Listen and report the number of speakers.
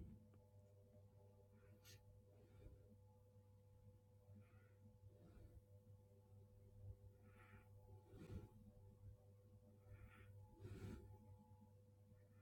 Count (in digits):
0